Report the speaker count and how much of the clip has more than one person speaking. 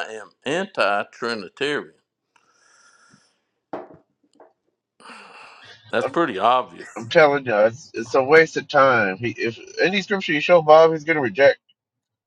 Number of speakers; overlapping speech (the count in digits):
2, about 1%